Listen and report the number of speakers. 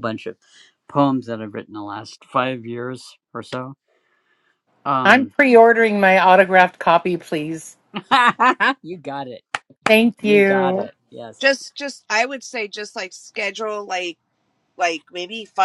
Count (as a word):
three